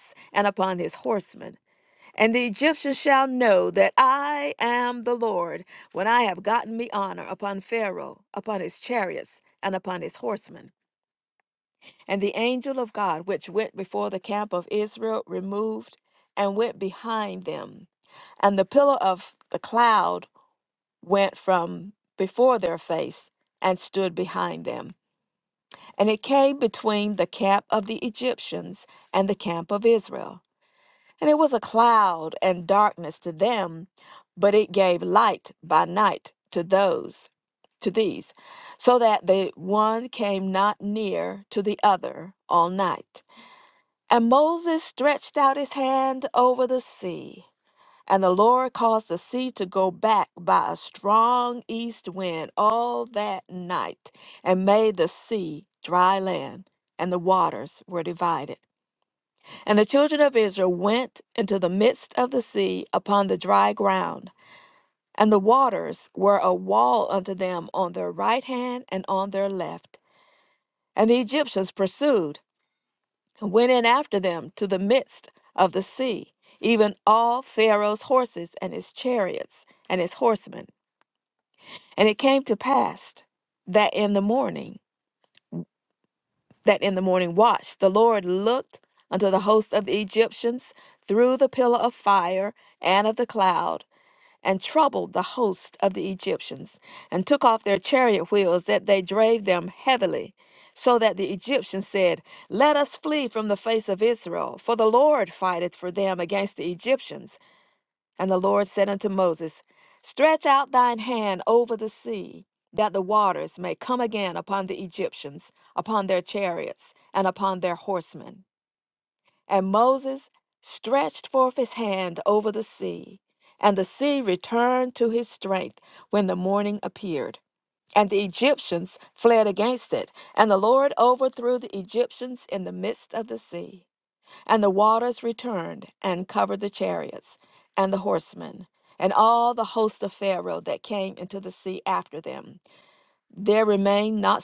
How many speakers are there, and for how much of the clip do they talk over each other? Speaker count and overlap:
1, no overlap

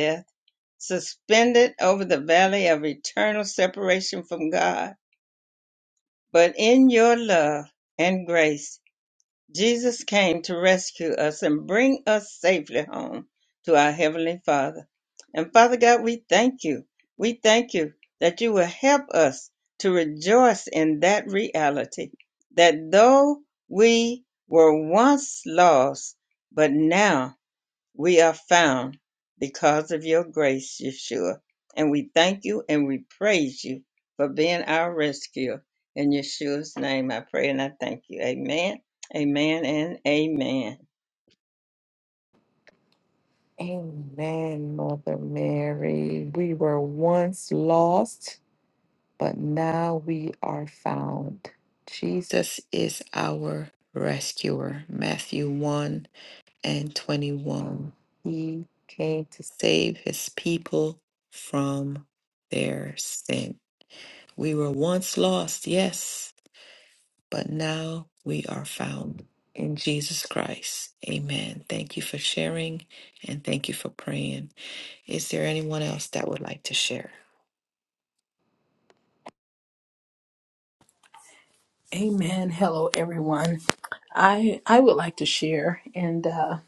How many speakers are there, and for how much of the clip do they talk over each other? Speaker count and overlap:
3, no overlap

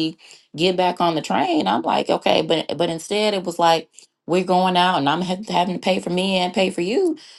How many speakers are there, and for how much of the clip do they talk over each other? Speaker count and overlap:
1, no overlap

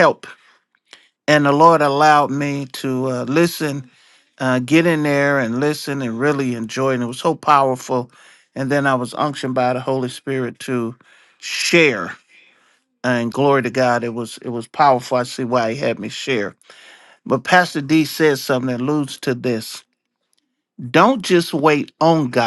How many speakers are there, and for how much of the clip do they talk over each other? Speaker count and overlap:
1, no overlap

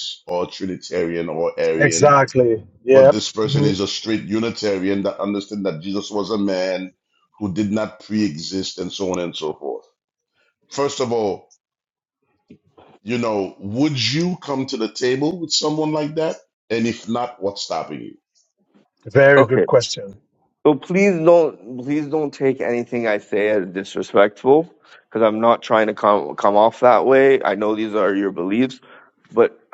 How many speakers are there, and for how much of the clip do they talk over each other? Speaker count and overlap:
3, about 3%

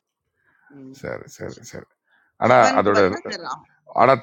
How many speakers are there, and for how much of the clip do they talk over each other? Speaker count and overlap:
2, about 17%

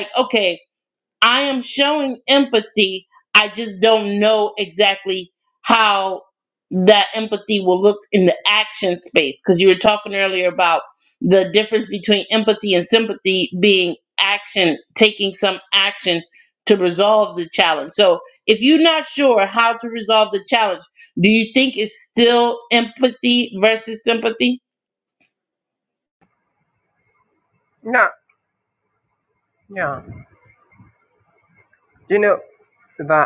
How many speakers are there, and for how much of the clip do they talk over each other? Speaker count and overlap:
2, no overlap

